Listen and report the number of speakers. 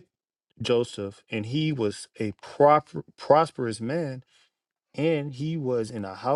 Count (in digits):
1